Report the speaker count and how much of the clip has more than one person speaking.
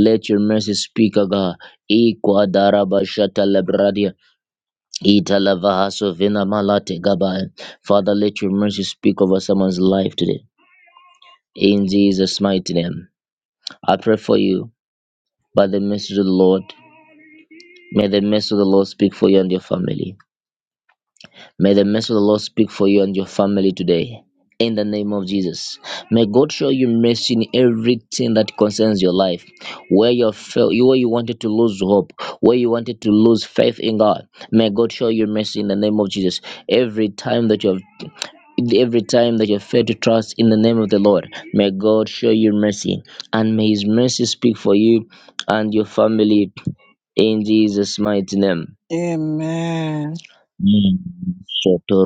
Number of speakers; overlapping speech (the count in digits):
2, no overlap